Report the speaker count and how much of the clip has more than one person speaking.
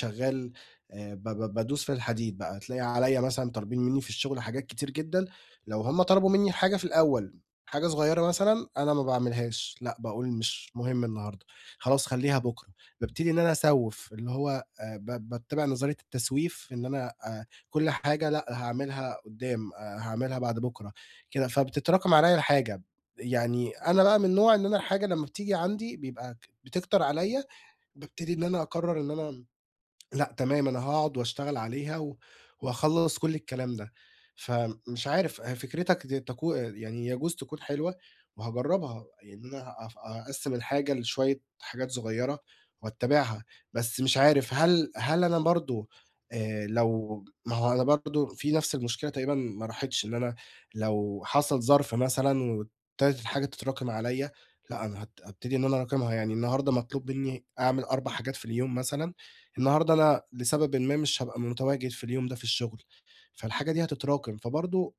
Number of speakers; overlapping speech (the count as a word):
one, no overlap